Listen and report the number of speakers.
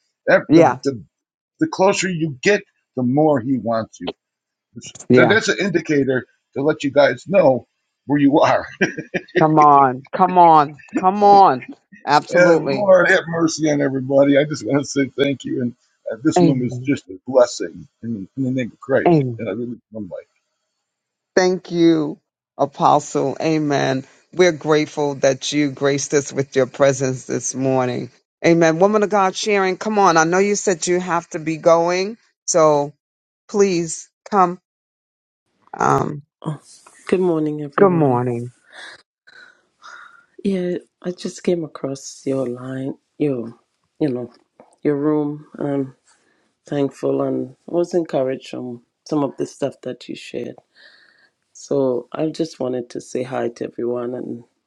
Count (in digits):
3